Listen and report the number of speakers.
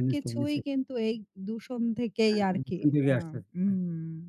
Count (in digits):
2